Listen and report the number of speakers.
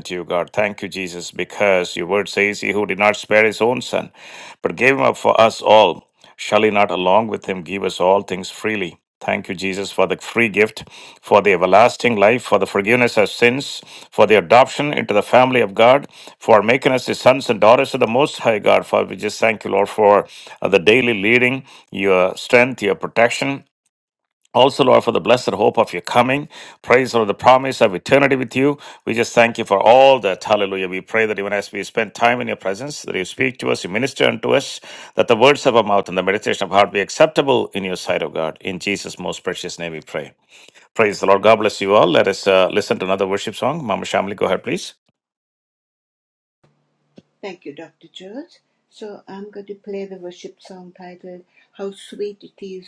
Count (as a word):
two